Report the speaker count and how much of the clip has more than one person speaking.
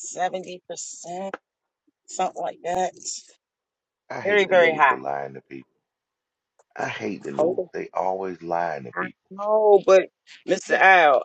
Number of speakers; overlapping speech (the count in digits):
2, about 10%